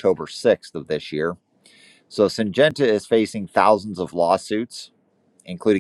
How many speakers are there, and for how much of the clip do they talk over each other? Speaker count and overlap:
1, no overlap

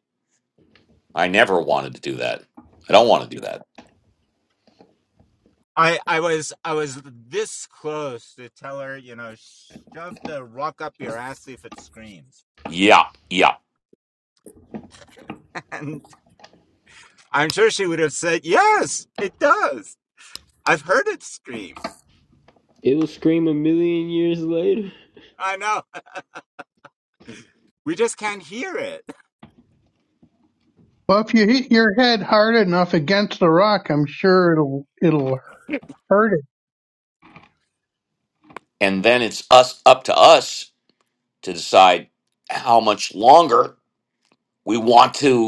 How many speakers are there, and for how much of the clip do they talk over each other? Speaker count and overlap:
4, no overlap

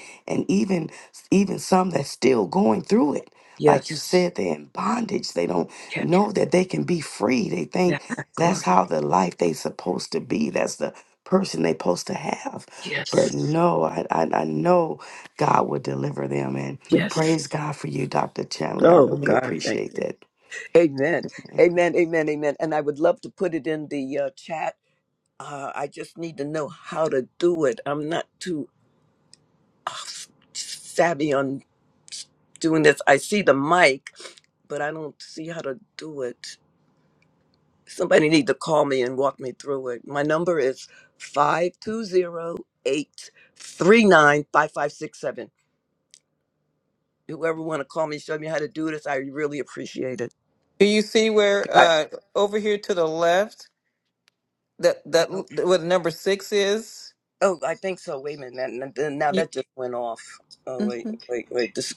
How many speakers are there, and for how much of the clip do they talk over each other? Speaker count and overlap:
3, about 5%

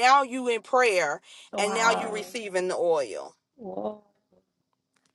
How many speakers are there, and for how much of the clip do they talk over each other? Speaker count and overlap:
2, about 14%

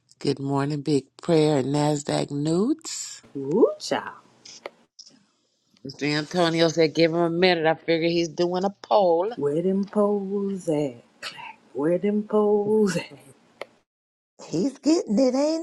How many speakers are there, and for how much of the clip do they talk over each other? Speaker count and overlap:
3, no overlap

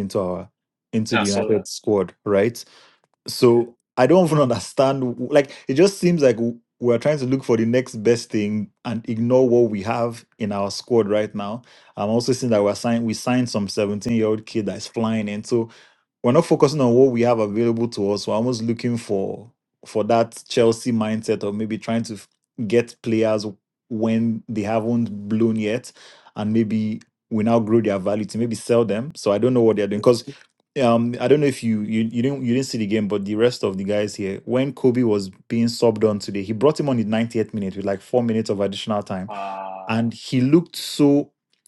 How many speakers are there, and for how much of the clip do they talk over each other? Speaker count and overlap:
2, about 2%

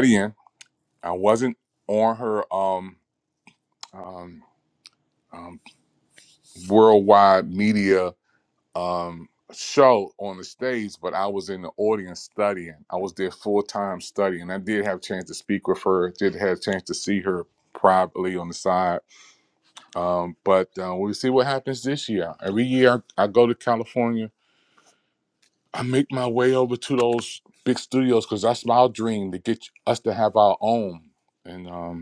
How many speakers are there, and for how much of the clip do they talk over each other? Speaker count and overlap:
1, no overlap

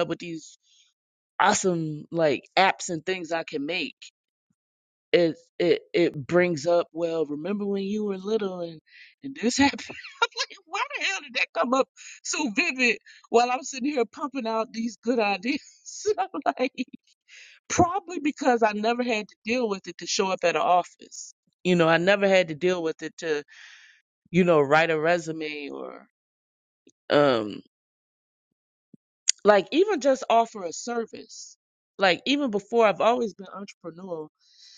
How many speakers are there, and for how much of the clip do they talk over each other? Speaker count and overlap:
1, no overlap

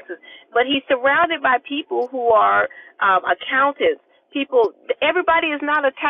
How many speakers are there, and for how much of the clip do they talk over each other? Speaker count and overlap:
1, no overlap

